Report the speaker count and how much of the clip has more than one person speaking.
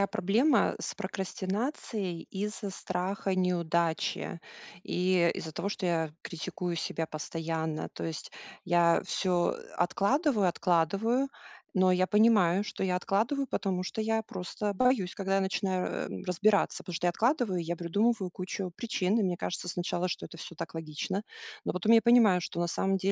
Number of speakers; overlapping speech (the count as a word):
one, no overlap